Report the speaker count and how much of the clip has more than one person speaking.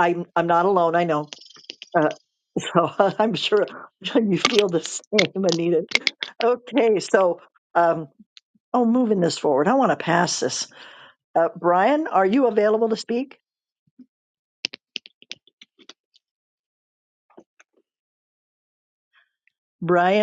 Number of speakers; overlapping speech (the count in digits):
1, no overlap